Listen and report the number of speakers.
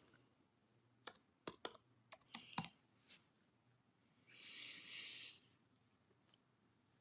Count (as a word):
zero